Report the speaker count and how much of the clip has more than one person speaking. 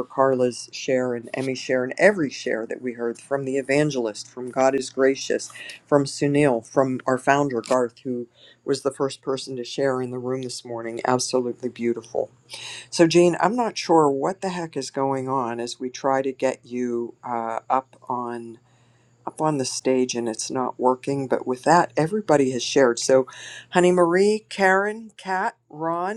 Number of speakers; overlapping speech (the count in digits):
1, no overlap